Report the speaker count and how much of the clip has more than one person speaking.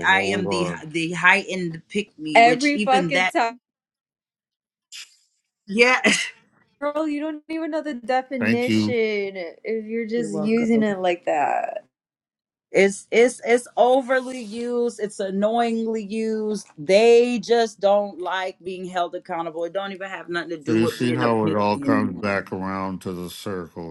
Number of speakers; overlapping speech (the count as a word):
three, about 18%